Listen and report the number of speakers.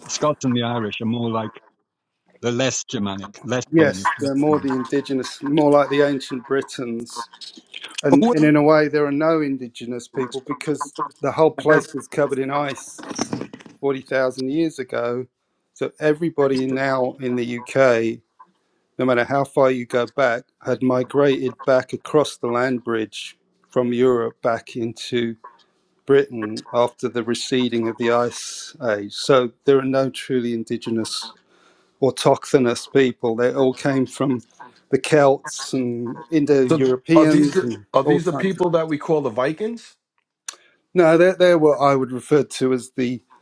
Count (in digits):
3